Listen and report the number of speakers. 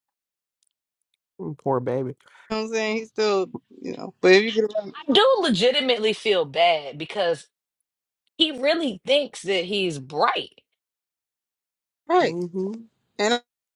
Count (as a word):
three